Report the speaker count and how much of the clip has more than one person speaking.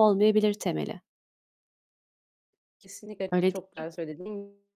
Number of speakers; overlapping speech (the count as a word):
two, about 11%